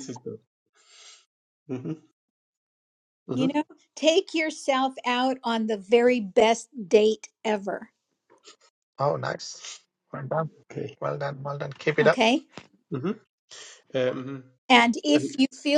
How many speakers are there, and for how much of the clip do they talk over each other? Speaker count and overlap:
three, about 3%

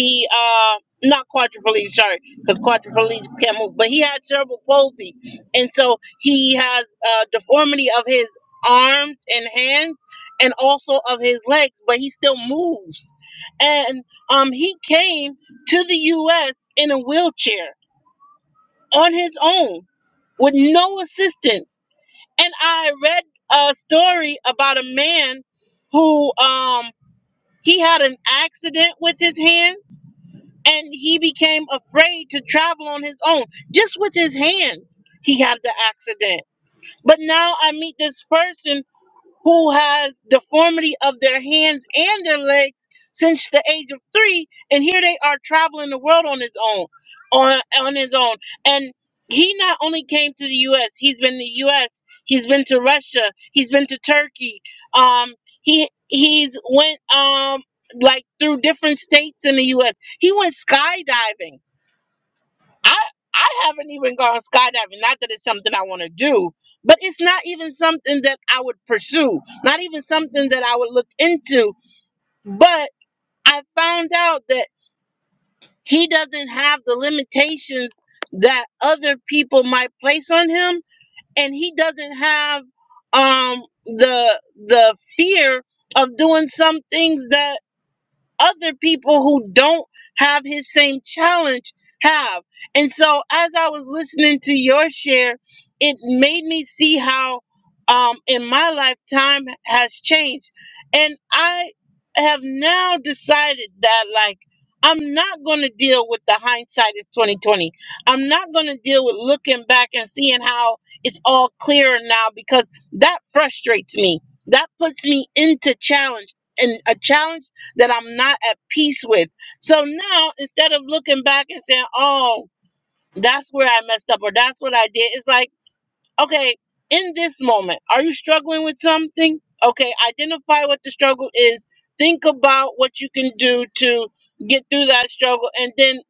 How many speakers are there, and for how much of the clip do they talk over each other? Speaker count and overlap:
one, no overlap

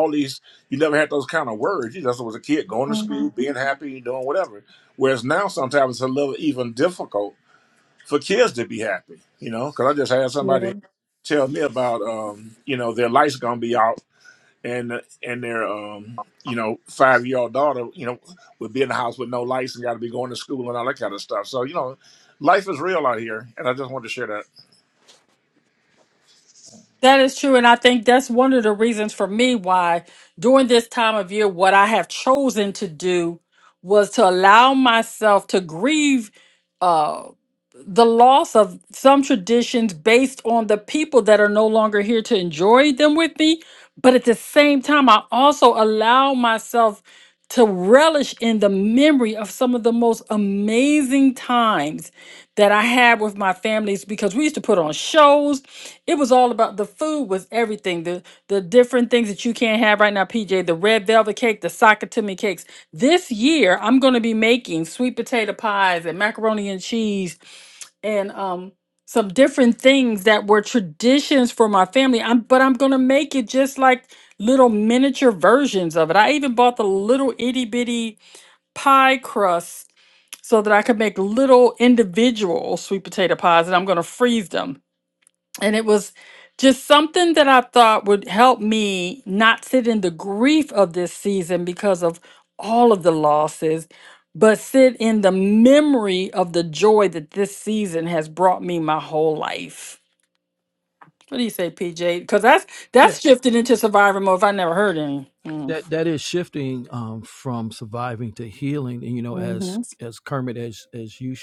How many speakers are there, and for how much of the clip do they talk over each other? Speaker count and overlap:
three, about 2%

